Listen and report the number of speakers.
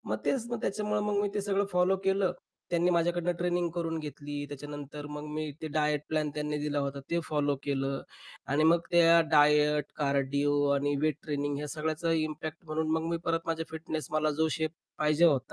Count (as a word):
one